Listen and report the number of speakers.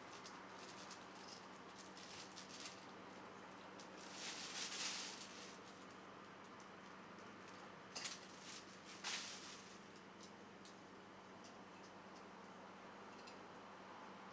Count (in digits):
0